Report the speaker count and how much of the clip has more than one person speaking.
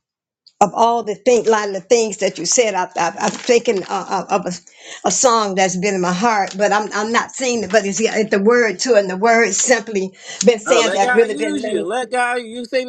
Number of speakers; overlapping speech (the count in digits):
2, about 9%